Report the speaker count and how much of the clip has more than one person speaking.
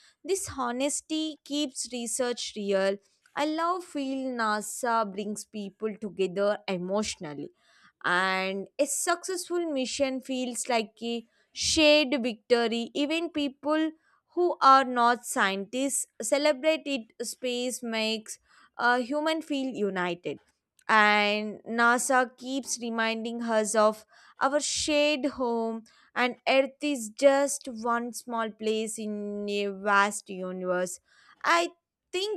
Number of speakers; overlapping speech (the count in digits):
1, no overlap